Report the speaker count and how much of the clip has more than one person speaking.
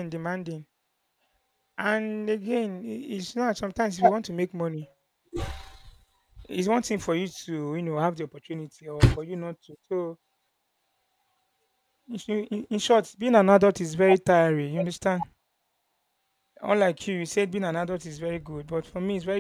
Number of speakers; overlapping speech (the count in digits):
1, no overlap